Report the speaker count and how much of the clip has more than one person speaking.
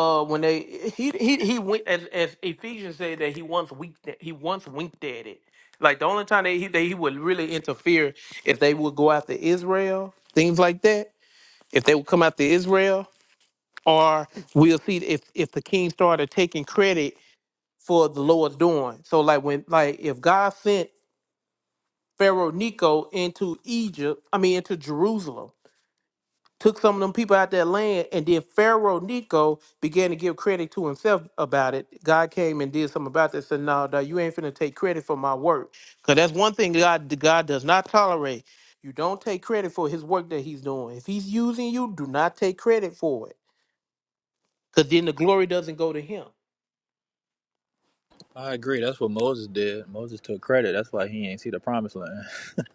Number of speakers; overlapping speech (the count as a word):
two, no overlap